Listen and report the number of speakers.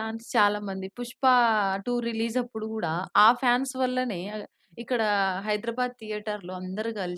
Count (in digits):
1